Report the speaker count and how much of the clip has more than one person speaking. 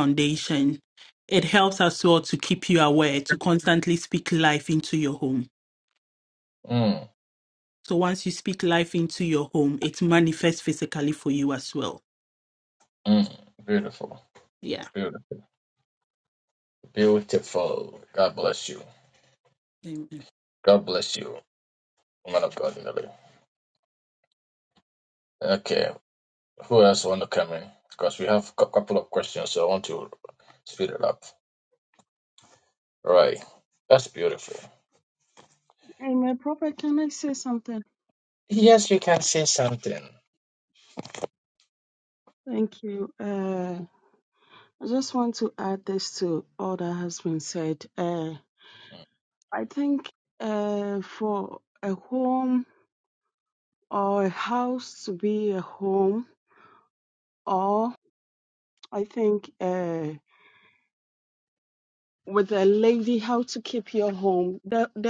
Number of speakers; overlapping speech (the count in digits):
3, no overlap